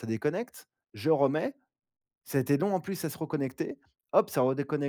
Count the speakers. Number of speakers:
1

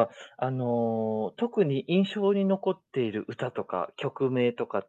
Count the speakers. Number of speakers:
1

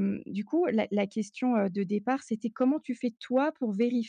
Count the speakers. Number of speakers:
1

